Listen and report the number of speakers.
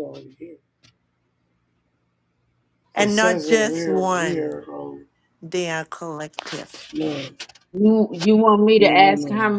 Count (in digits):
3